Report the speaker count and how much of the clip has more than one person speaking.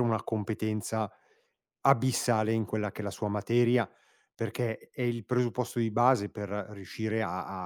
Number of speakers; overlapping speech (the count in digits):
1, no overlap